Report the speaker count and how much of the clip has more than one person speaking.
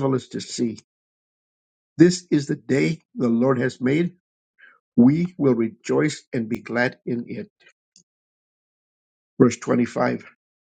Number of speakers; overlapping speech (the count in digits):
1, no overlap